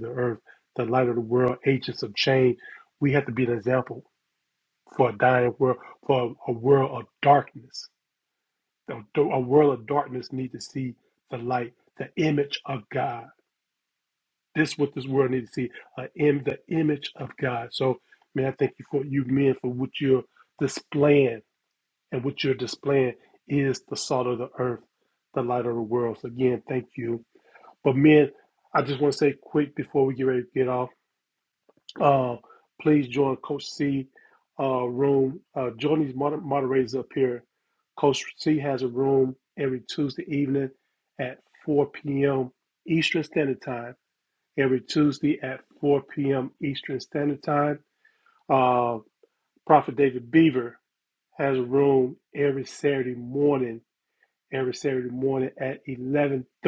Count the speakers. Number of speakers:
1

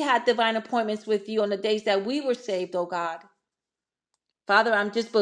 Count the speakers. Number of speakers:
1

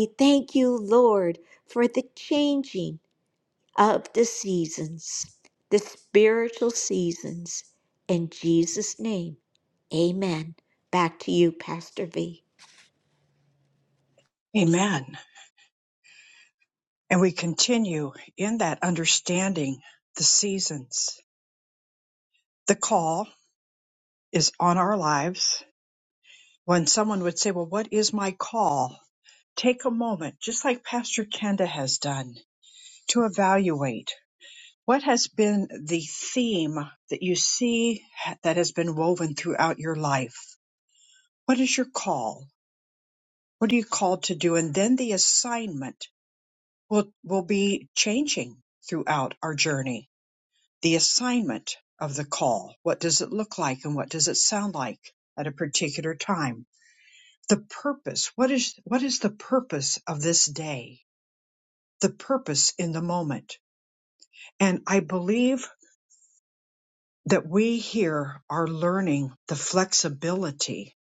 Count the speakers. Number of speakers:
2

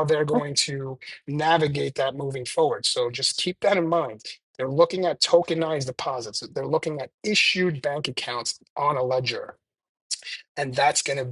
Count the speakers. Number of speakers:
1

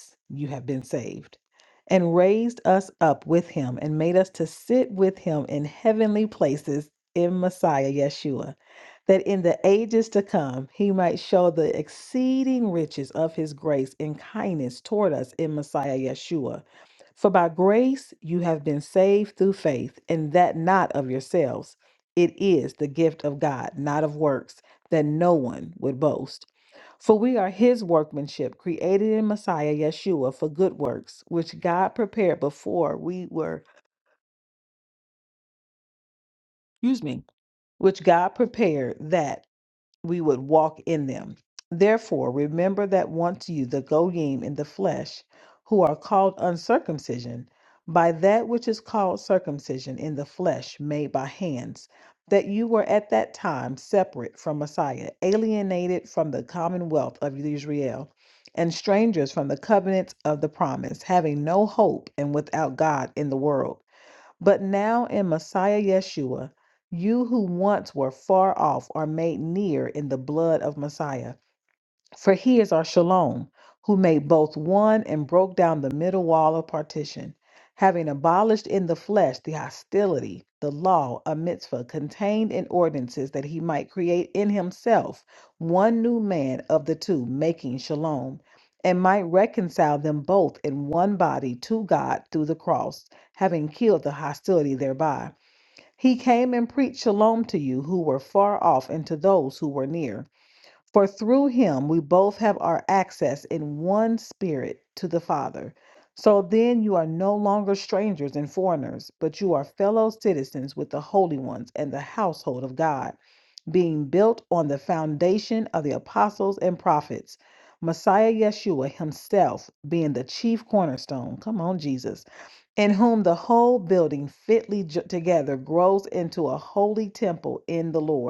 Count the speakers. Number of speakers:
1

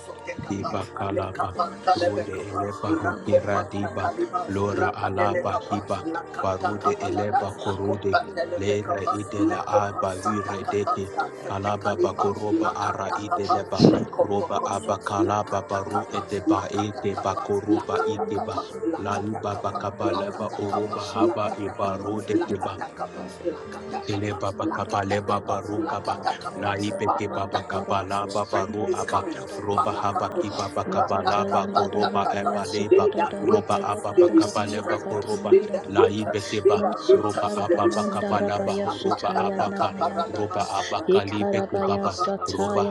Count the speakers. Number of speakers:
3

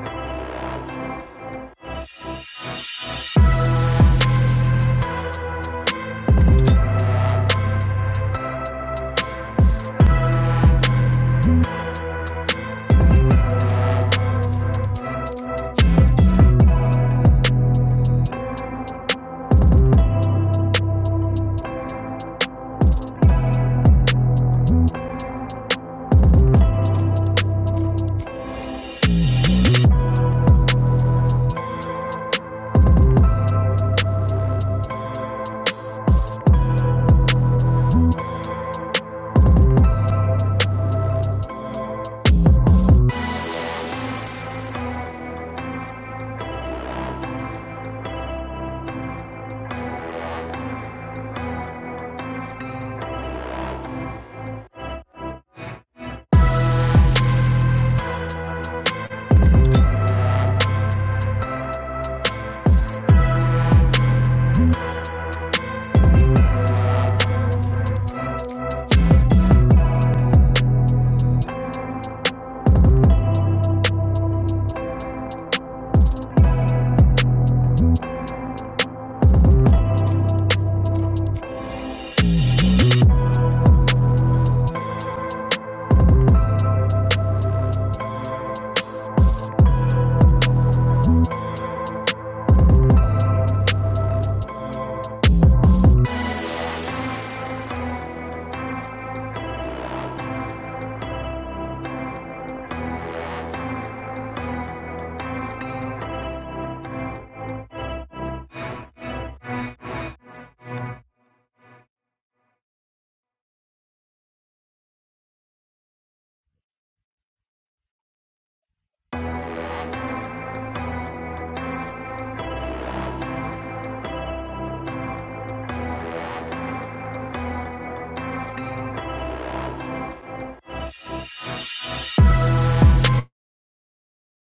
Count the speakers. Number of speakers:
0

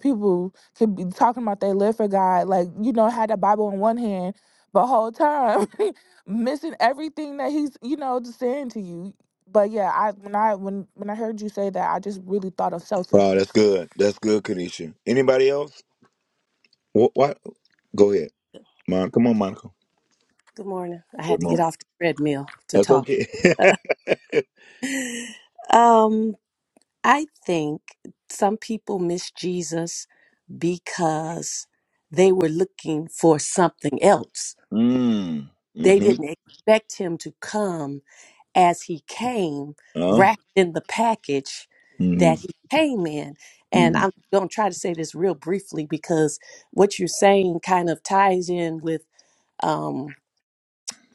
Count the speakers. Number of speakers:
3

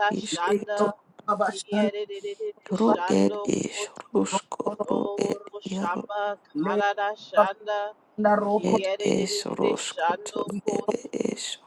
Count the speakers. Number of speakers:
3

